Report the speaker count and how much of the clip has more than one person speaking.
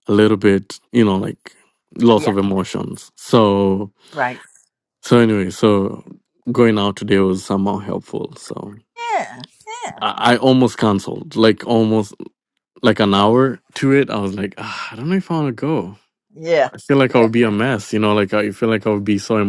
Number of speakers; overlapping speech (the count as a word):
two, about 2%